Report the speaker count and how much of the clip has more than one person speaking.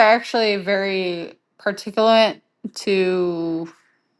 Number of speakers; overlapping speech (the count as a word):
one, no overlap